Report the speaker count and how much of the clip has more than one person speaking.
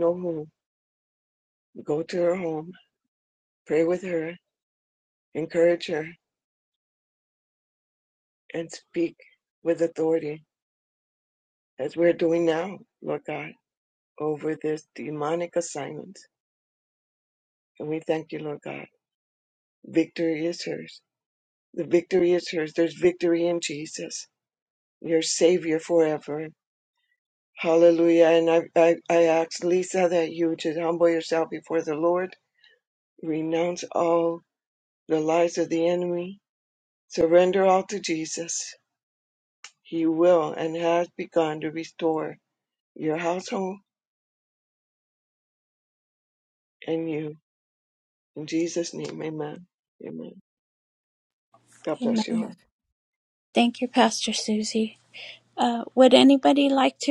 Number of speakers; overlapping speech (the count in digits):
2, about 1%